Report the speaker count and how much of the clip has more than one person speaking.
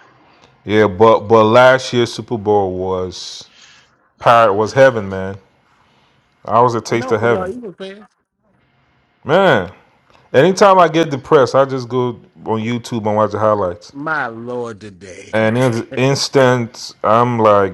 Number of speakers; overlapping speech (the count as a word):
two, about 3%